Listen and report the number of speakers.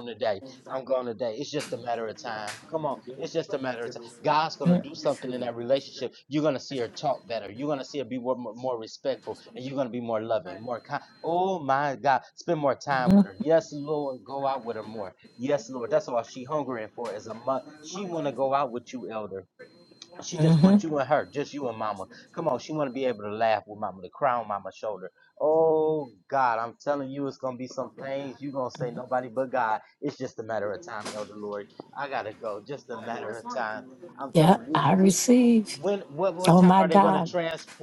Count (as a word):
two